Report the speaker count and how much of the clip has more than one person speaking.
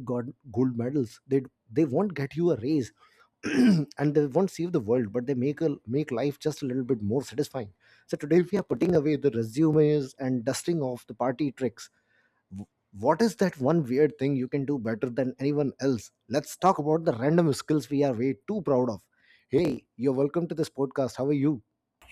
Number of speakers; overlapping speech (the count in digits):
1, no overlap